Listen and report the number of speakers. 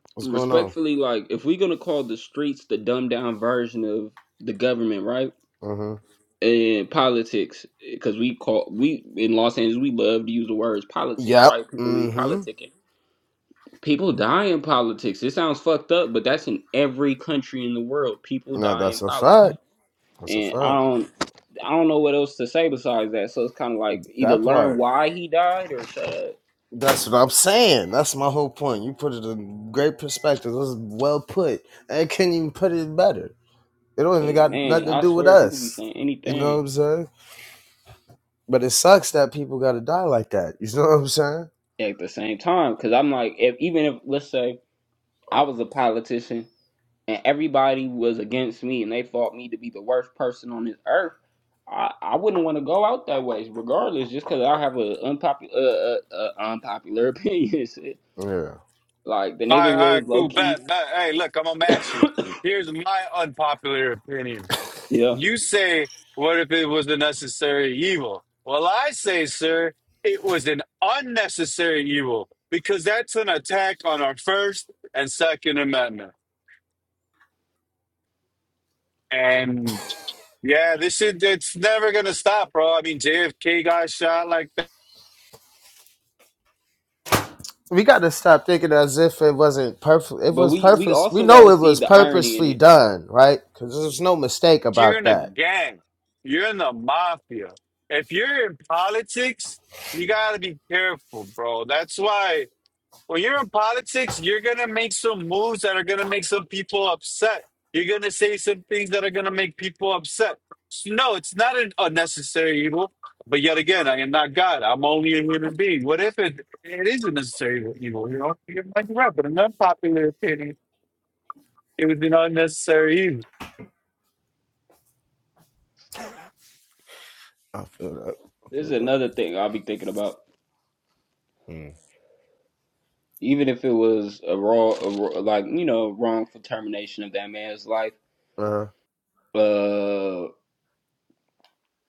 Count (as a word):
three